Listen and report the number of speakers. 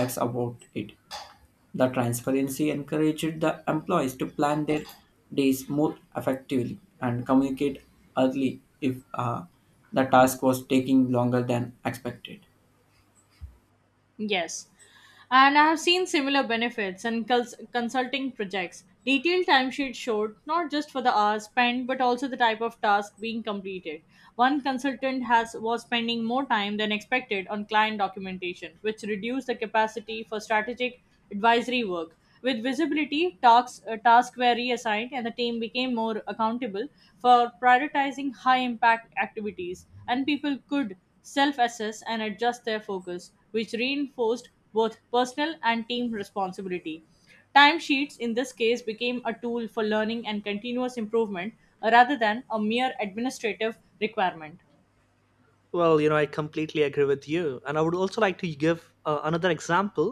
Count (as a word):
three